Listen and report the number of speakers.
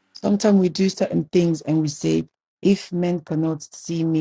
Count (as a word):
one